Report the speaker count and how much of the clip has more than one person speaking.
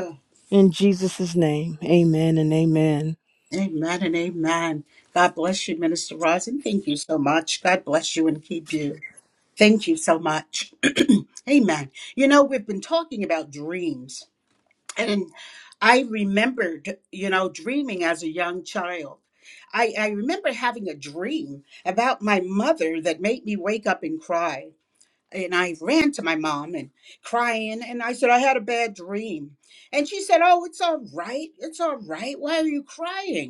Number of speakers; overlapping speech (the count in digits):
2, no overlap